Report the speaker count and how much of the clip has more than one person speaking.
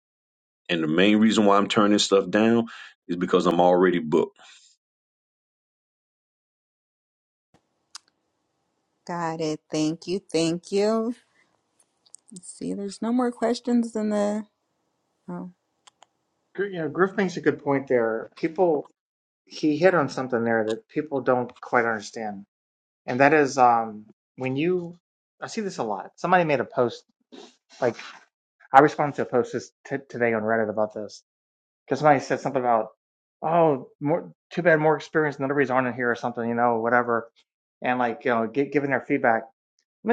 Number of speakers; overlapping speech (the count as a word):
three, no overlap